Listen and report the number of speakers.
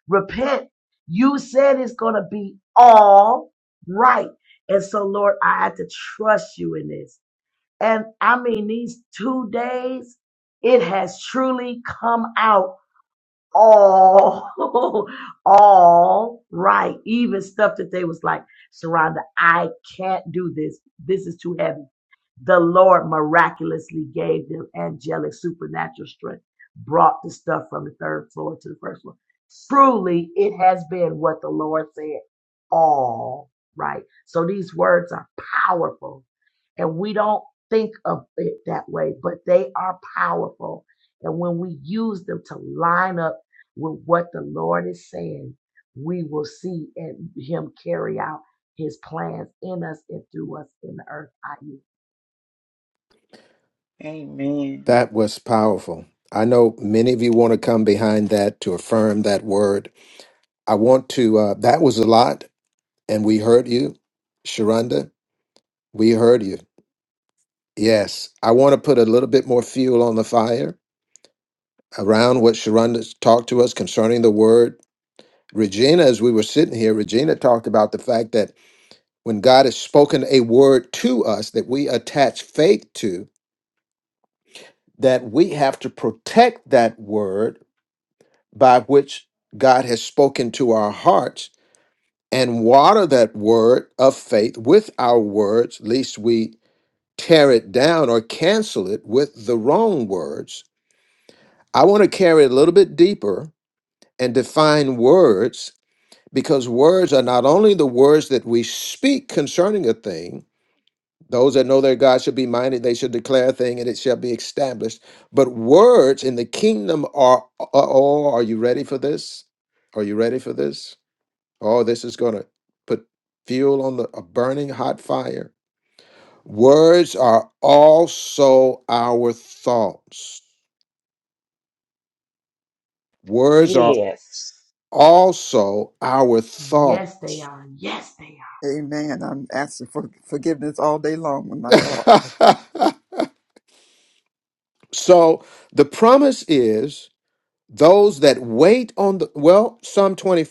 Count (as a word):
four